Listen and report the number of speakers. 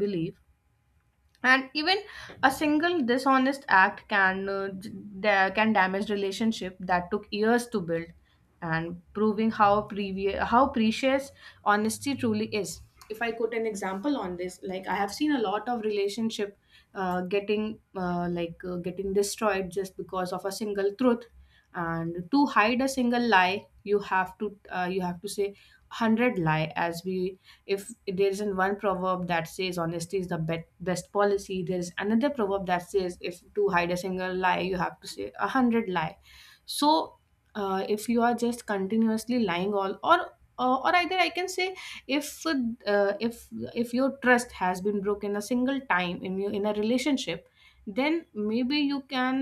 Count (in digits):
1